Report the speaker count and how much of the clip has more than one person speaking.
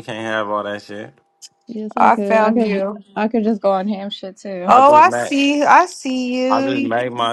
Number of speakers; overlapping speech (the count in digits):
3, about 27%